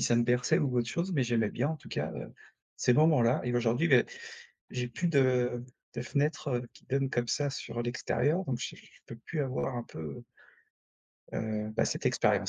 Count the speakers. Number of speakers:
1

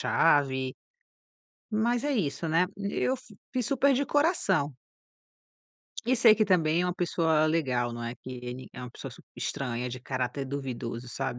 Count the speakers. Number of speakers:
1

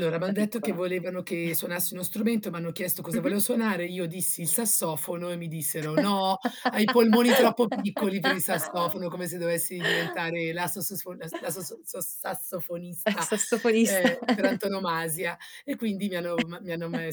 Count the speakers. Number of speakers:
2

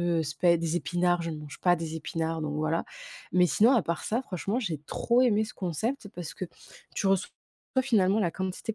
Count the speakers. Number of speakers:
1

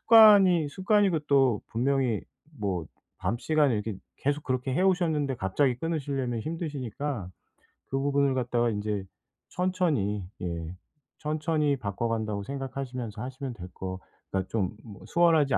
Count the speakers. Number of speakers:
1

